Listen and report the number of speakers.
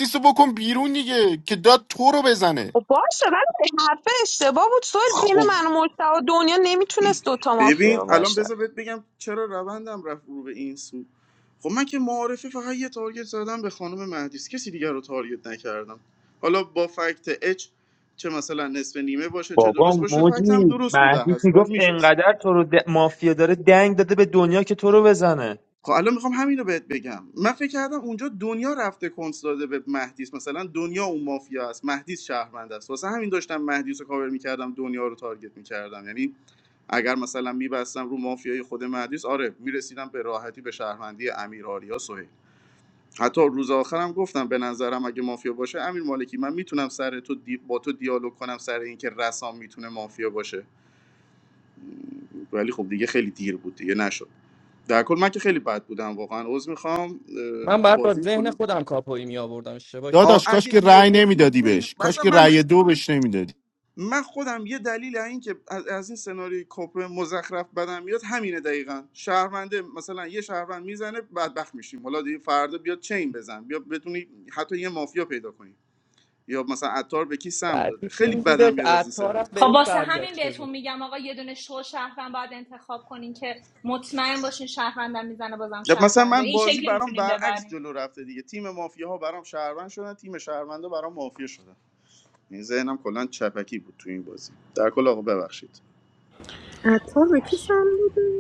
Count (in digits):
7